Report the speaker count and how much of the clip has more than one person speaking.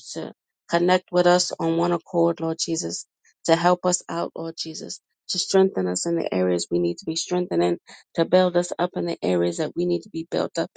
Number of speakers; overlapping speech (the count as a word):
one, no overlap